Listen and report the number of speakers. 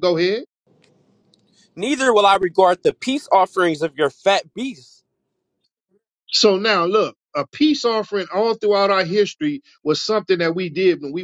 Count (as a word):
two